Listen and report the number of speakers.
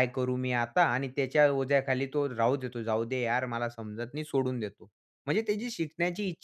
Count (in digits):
1